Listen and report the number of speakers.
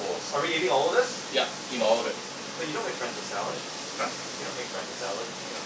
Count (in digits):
2